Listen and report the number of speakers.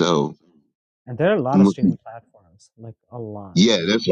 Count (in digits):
2